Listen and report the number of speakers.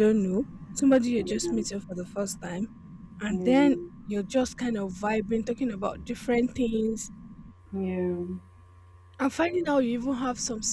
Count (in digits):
2